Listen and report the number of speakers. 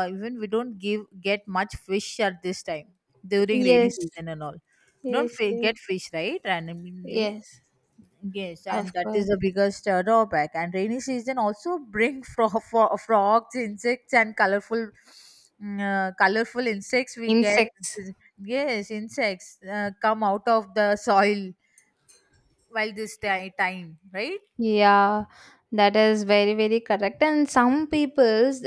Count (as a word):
two